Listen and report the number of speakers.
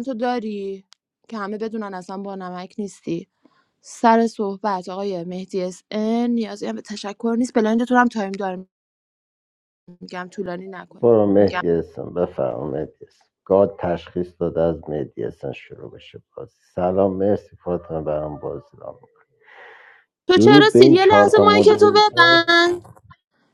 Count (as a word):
two